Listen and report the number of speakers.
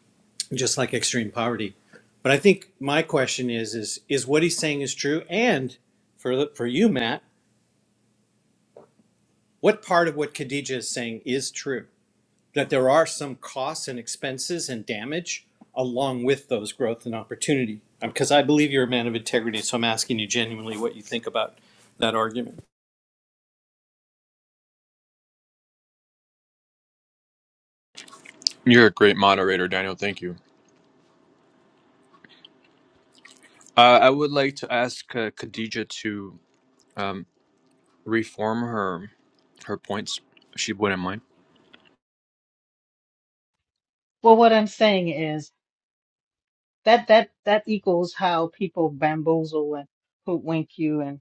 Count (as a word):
three